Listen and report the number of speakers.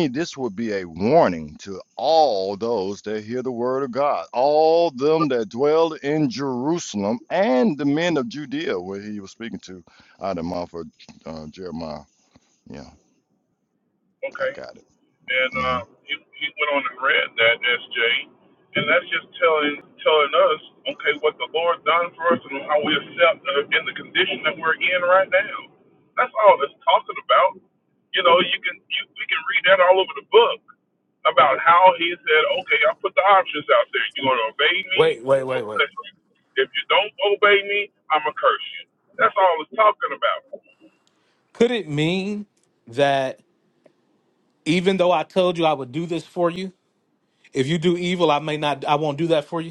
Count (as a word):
three